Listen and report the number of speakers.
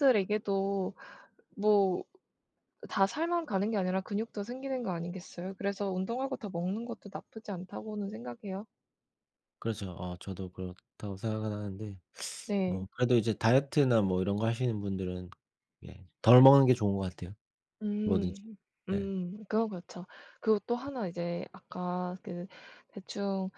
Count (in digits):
2